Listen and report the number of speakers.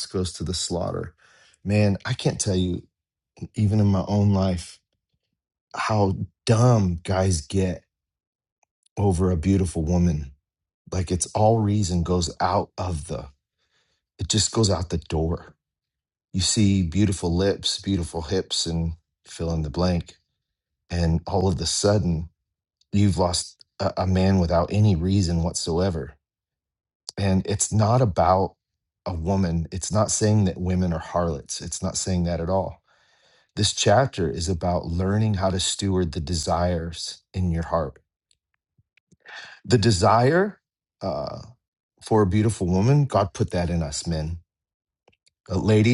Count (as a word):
one